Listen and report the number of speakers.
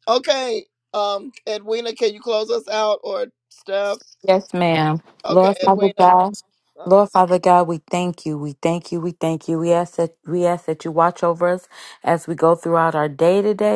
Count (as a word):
two